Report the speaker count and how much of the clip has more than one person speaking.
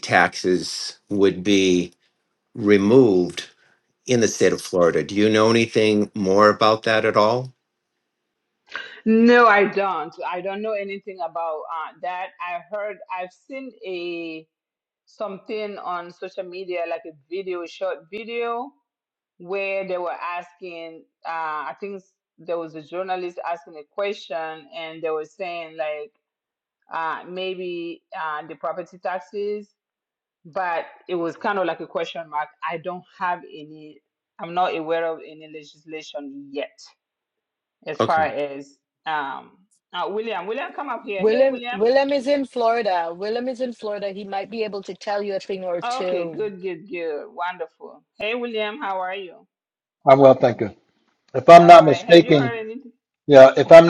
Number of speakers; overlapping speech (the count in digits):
4, about 4%